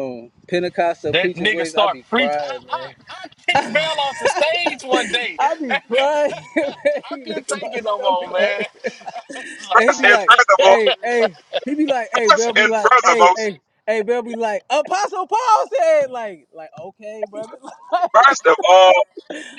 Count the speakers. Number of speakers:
three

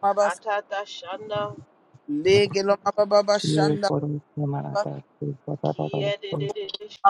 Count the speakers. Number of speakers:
three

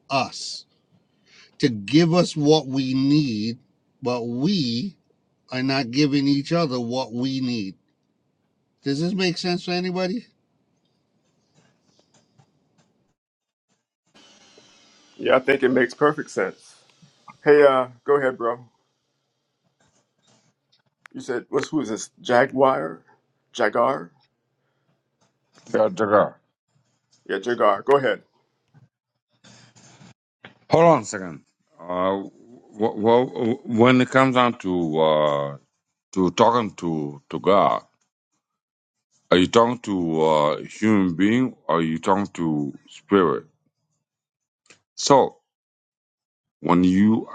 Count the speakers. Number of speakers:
three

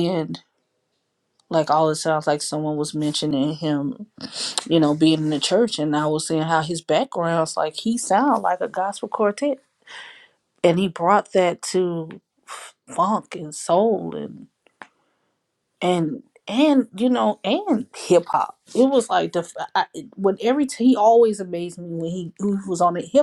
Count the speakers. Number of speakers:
one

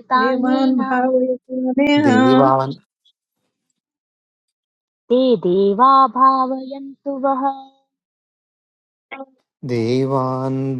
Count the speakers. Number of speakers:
three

